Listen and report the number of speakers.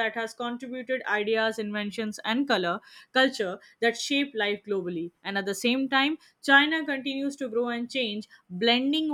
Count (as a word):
one